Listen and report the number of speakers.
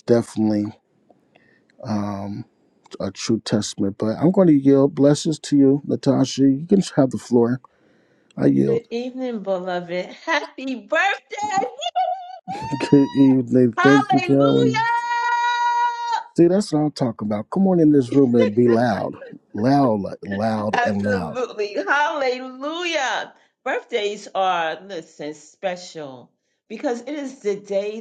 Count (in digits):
2